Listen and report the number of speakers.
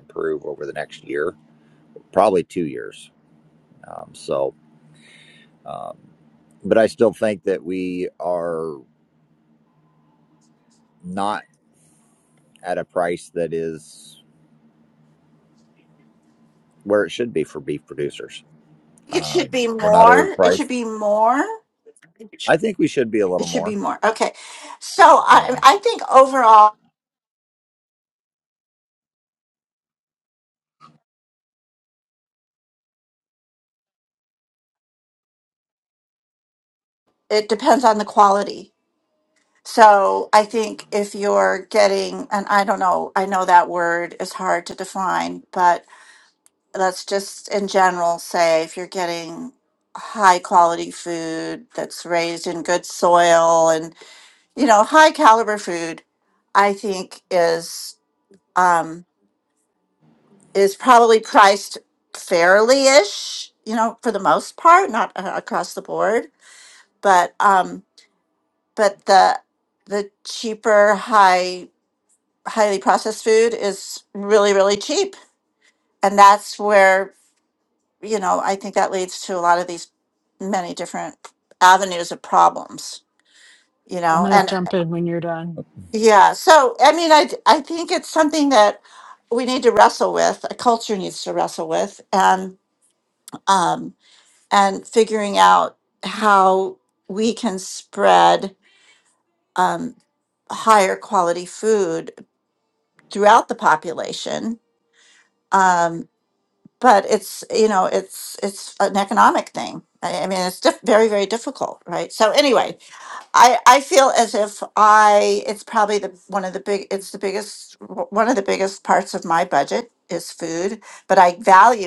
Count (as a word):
three